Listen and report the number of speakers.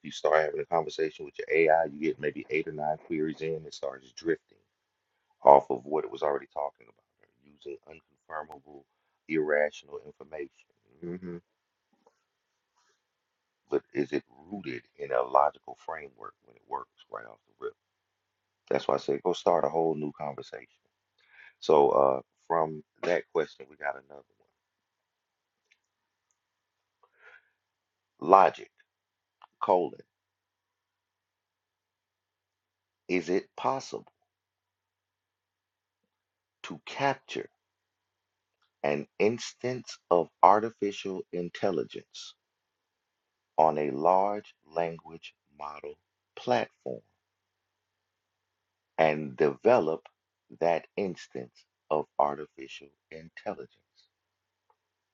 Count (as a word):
one